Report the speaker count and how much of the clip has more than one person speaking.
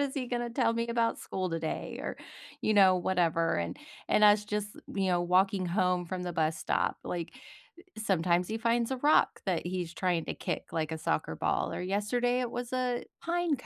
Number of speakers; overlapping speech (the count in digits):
1, no overlap